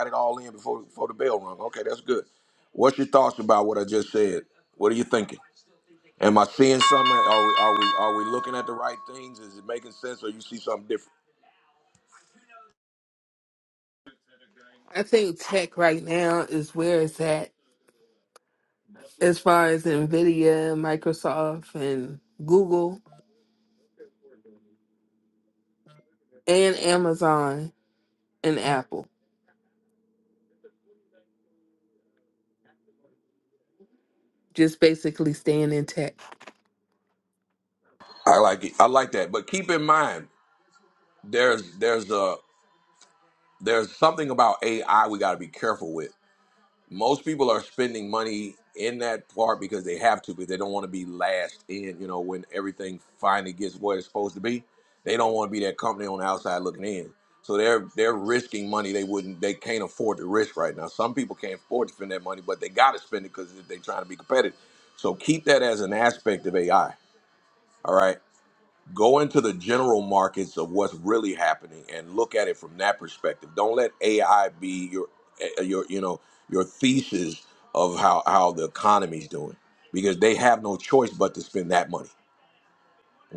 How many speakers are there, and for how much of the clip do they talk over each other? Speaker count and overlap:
two, no overlap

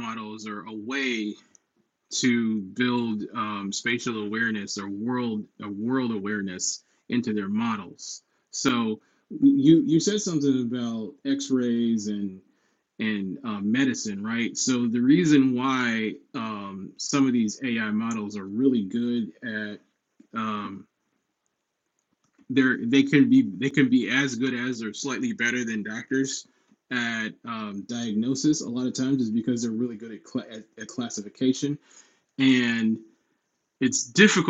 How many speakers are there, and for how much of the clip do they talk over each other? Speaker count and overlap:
one, no overlap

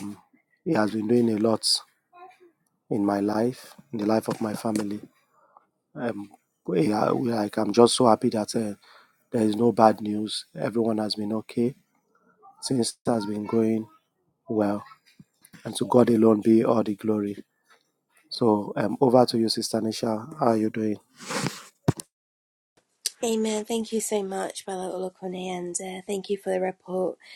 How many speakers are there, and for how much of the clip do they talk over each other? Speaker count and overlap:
two, no overlap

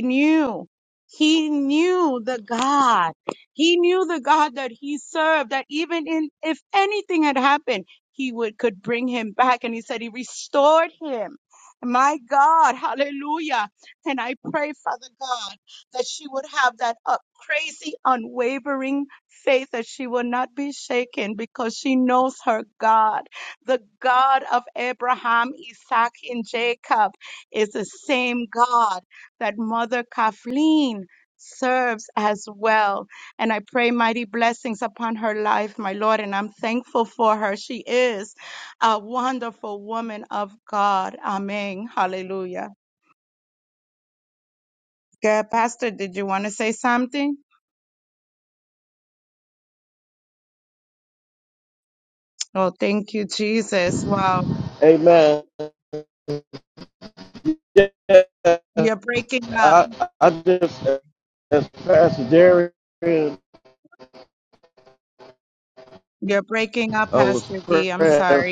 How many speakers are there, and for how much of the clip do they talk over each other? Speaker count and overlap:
two, about 2%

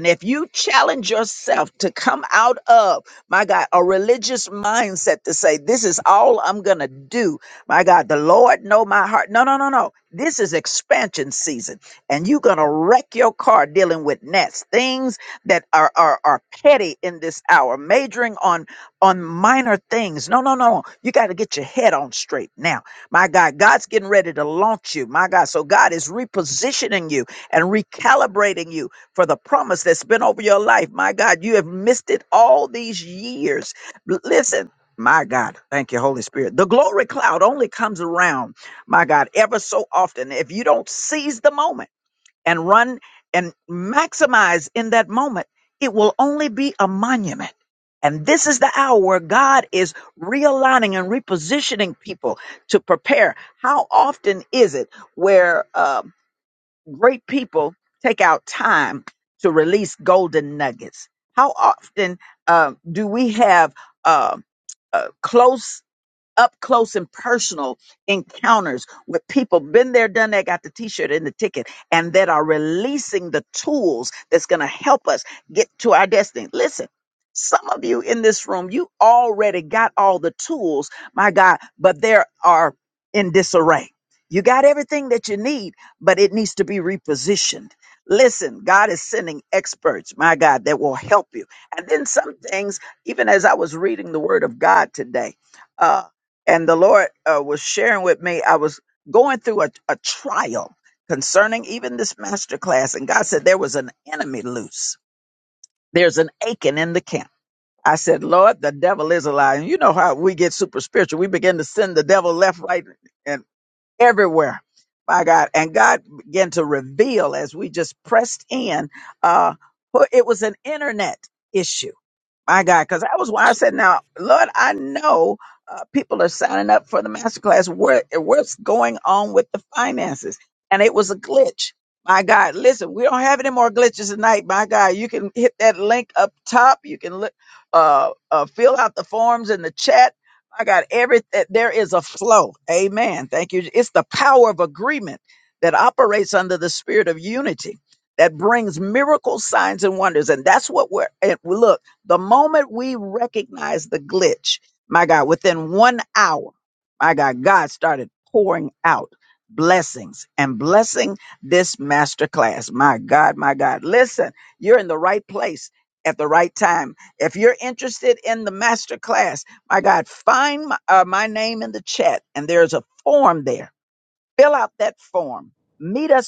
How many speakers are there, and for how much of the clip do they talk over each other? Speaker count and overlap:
one, no overlap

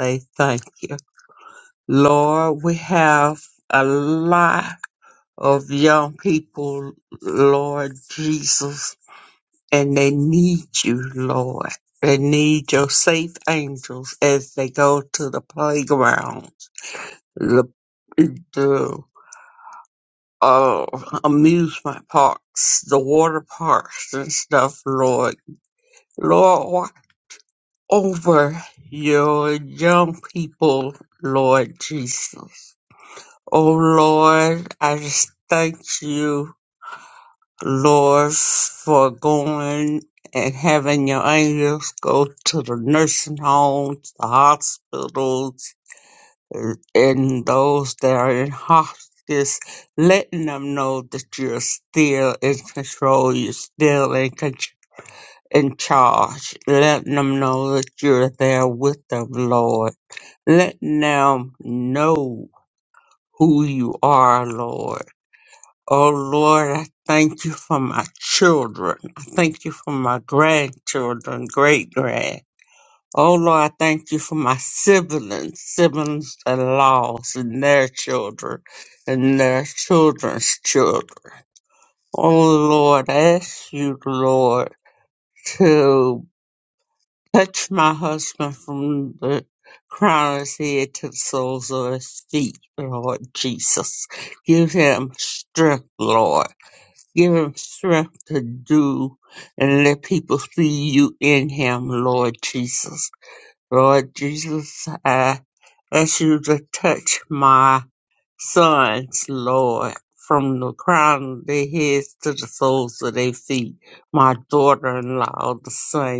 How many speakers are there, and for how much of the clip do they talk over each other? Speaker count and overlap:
one, no overlap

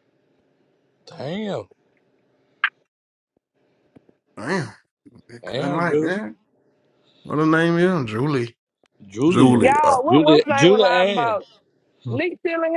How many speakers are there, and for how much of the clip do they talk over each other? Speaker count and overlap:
three, about 20%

